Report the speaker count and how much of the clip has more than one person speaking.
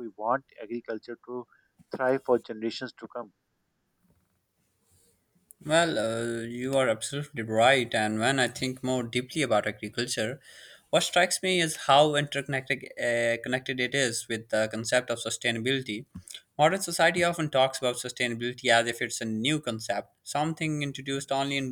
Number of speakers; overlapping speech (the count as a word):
two, no overlap